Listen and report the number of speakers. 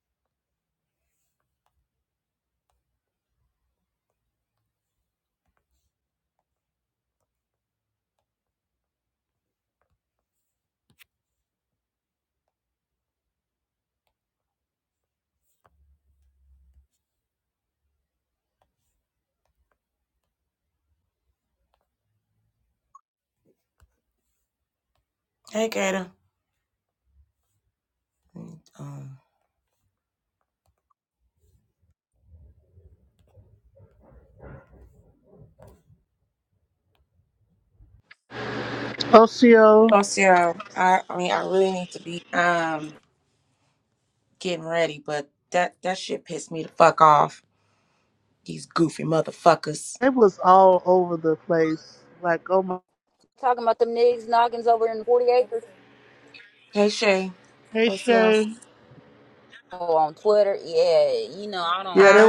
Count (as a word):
three